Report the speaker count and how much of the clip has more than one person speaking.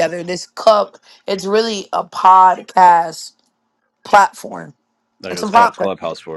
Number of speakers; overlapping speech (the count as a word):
two, about 9%